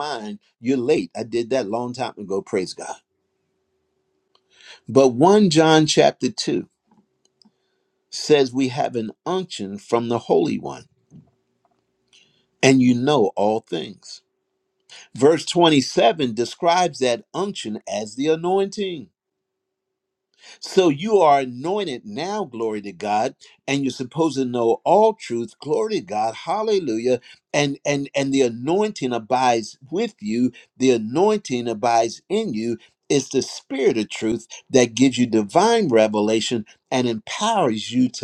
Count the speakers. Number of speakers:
1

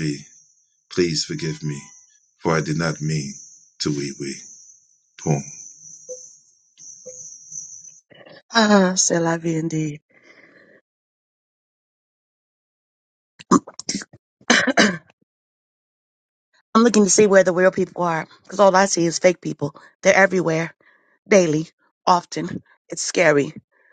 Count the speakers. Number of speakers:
2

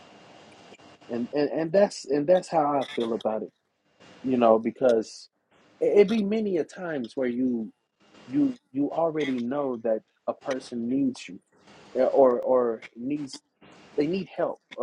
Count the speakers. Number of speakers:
1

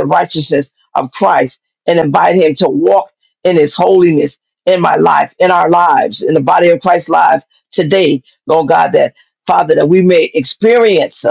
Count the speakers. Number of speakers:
1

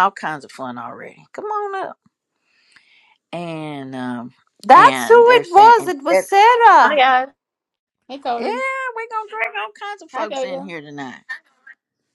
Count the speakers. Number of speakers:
3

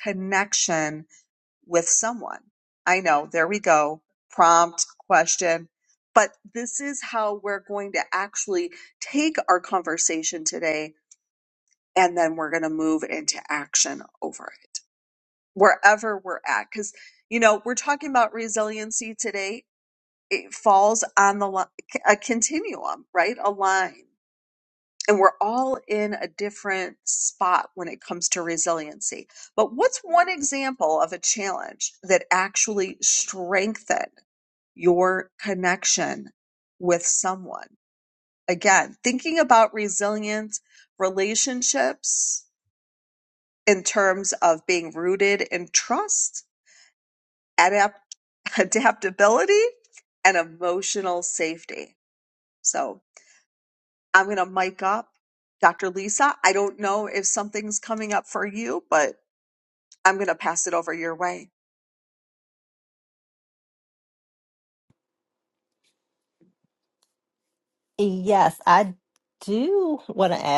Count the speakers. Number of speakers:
2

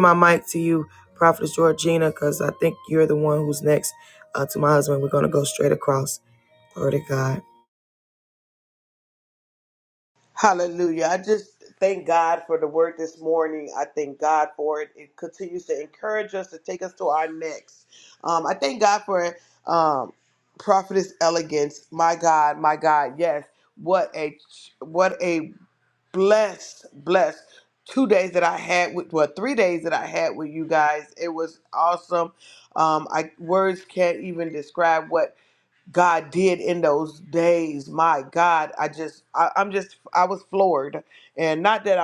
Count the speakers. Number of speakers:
2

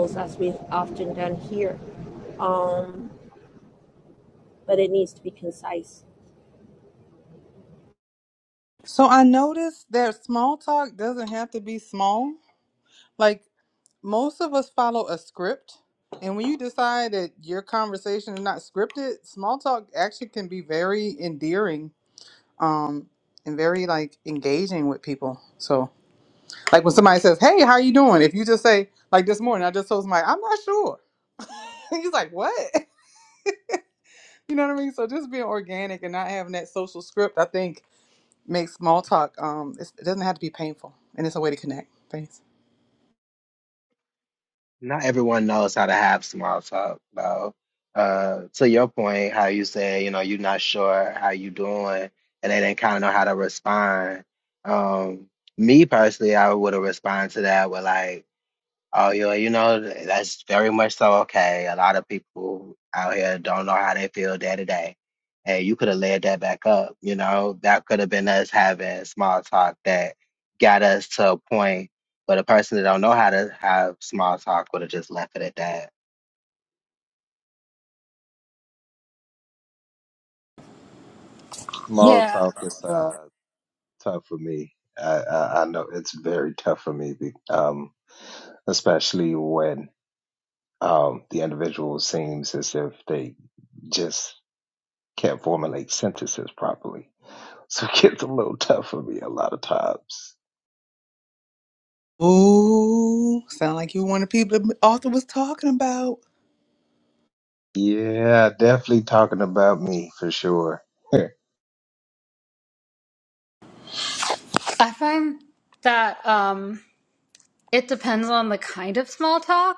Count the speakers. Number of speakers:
5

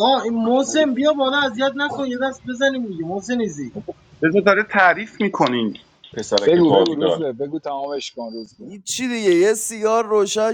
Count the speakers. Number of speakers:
4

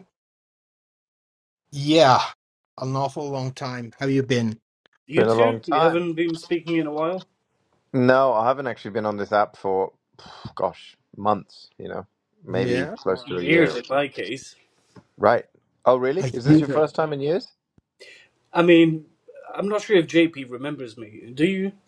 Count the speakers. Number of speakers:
3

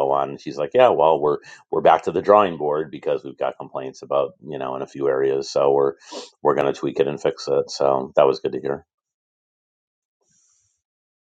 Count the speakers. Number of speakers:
1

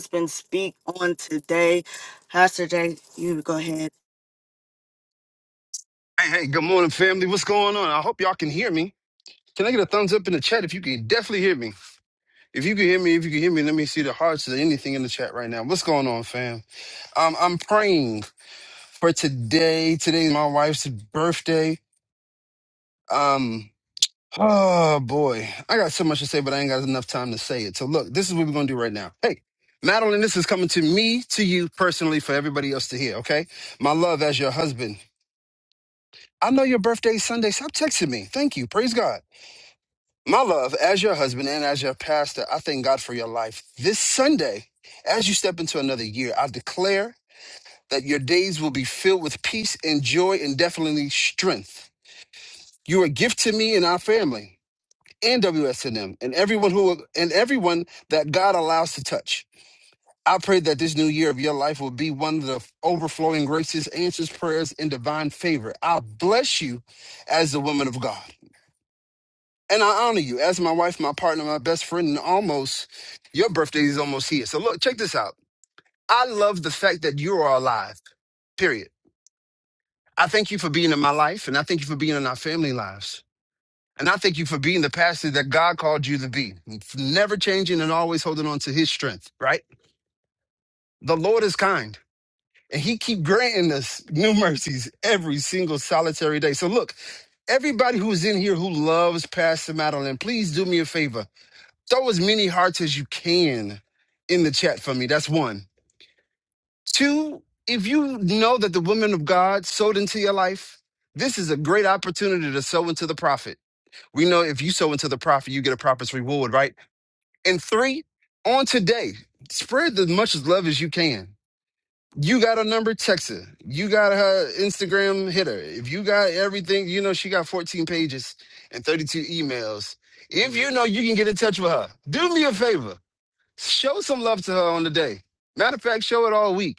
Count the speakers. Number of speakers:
2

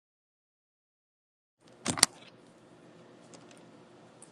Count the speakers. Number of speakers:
0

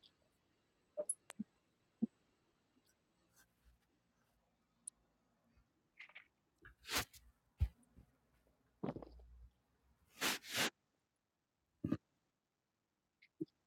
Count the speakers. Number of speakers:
0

